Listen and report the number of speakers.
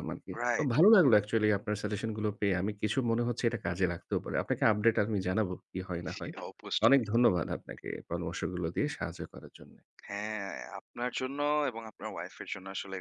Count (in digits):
2